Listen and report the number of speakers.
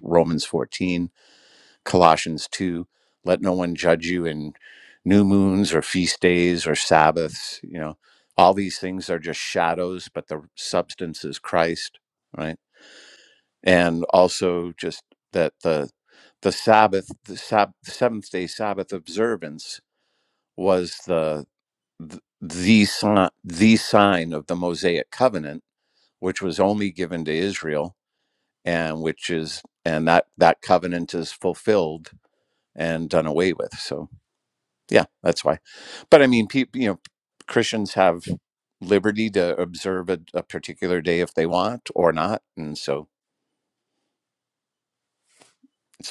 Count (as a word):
one